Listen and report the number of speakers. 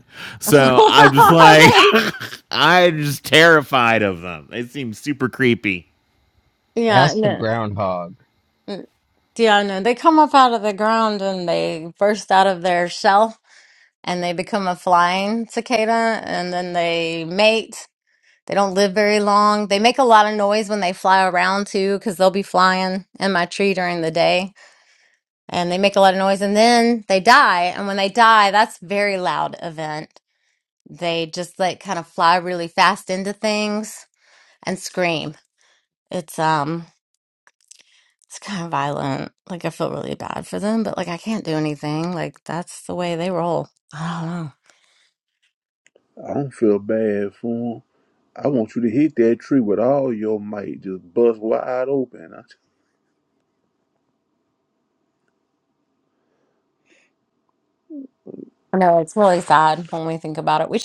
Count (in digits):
4